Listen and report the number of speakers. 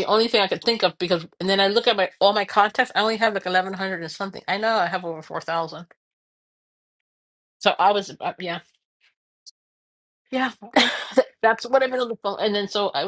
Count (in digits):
1